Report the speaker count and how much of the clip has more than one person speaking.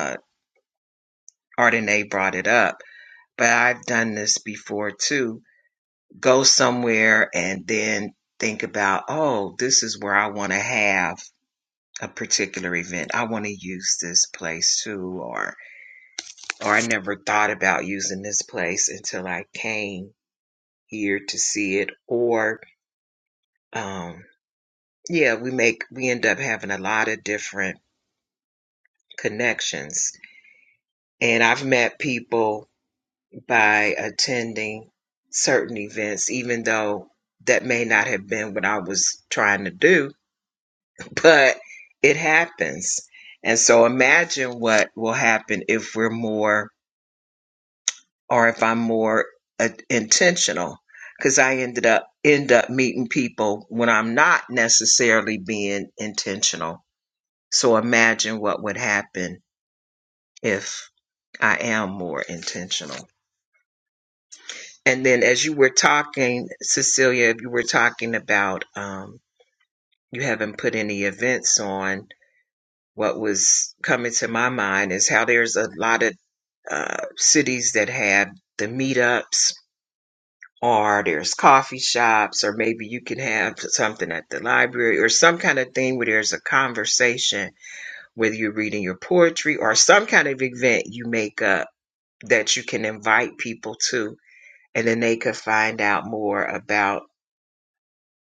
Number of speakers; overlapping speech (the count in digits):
1, no overlap